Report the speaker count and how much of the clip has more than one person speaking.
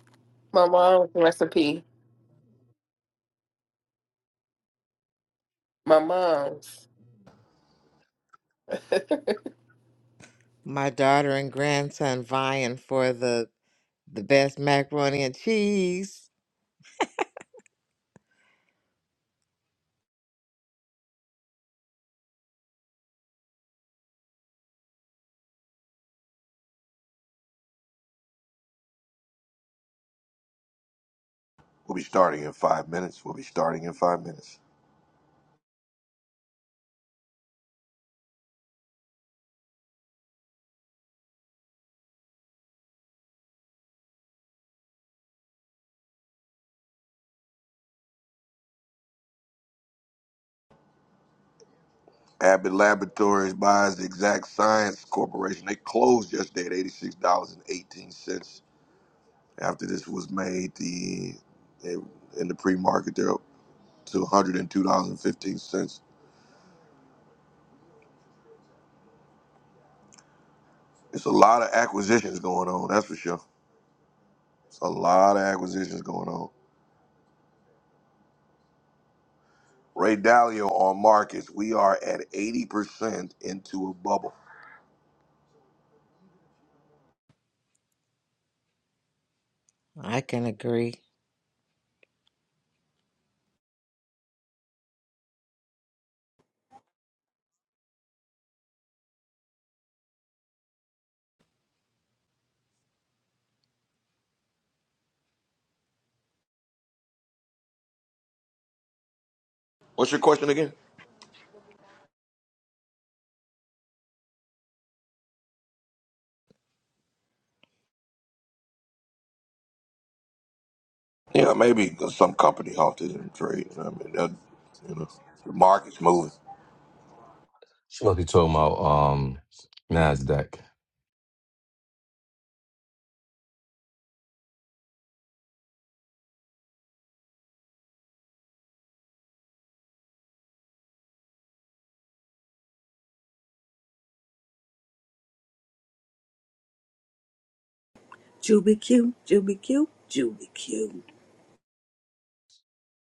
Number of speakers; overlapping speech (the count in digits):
5, no overlap